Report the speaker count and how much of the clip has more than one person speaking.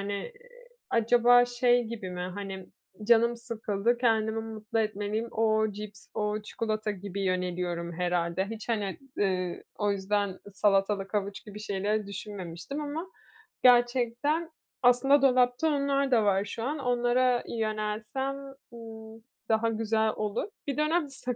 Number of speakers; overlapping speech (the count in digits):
1, no overlap